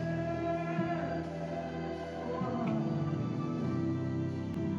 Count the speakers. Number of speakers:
0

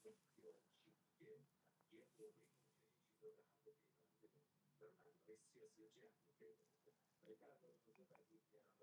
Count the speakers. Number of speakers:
0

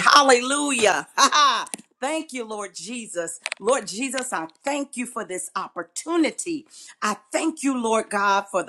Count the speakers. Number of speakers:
1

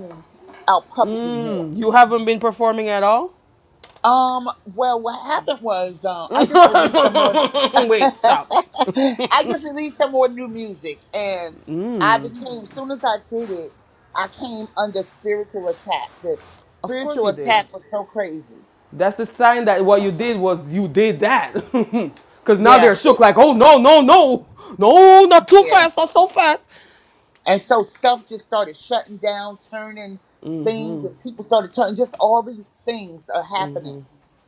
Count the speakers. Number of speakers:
2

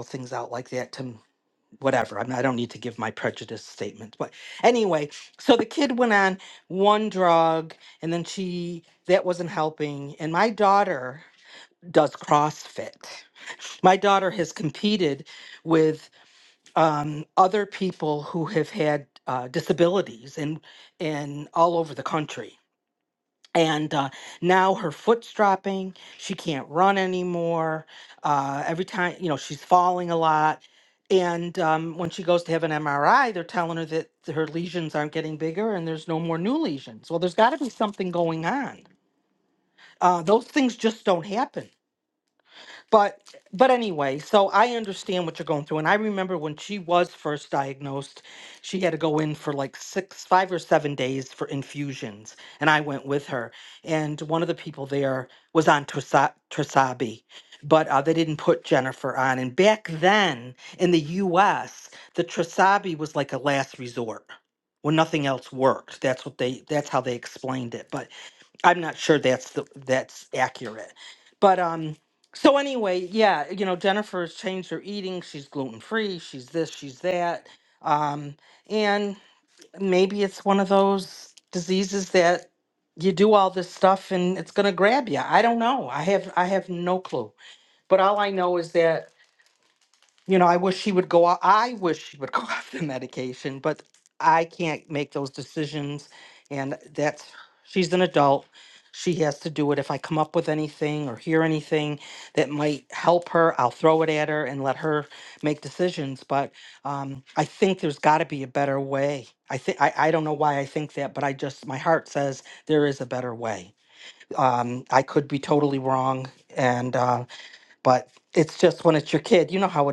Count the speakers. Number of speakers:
1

